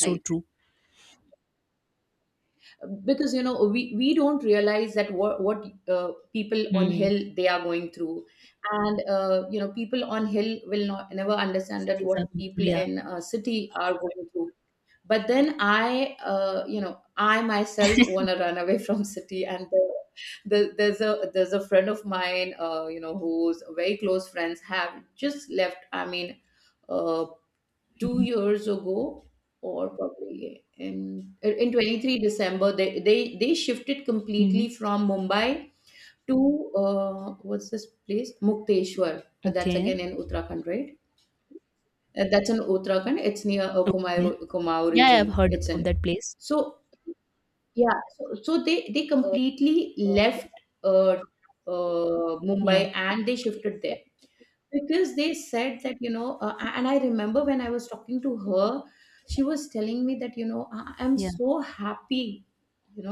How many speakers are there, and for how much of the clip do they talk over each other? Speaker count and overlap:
two, about 6%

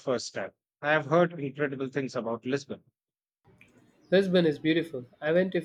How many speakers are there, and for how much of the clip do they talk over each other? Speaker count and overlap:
two, no overlap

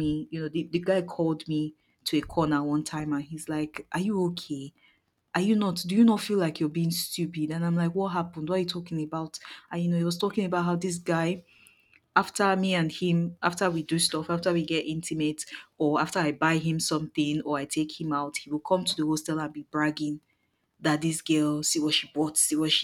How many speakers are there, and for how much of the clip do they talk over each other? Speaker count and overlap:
one, no overlap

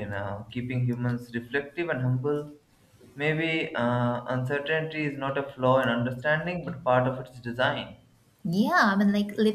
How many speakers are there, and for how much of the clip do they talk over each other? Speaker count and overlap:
two, no overlap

